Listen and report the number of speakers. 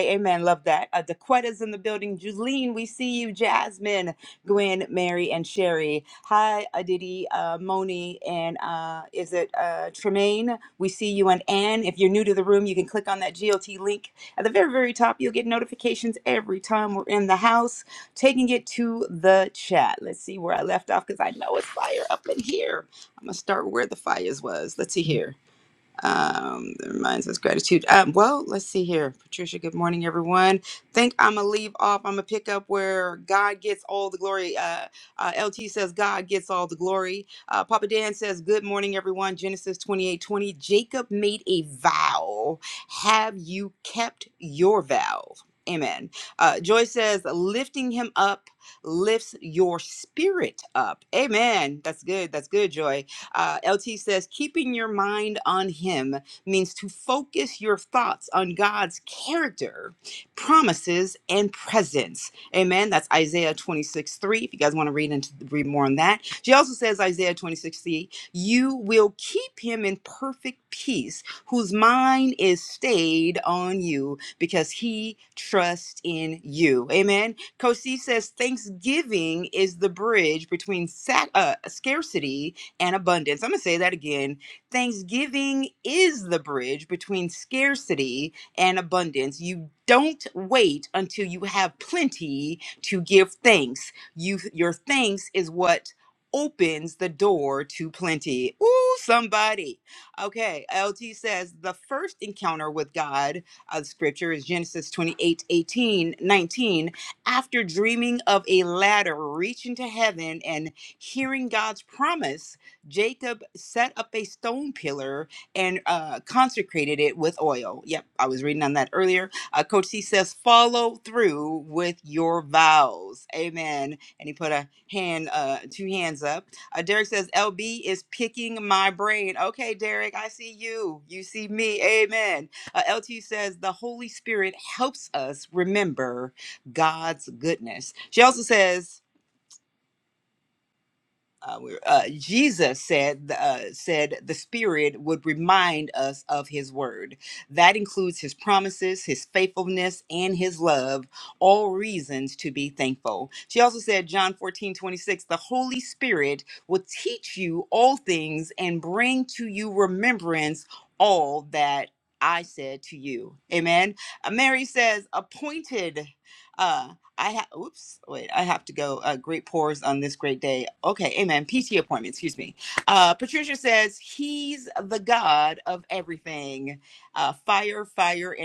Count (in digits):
1